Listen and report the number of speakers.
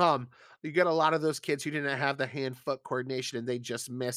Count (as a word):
one